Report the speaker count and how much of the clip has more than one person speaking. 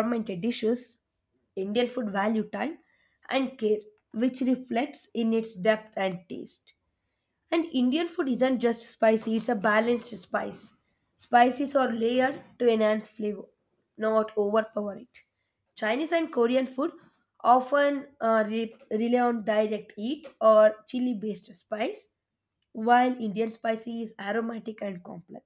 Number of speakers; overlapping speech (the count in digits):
1, no overlap